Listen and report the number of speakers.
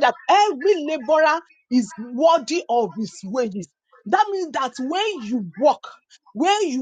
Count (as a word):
one